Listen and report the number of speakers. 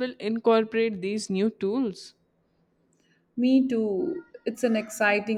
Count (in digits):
2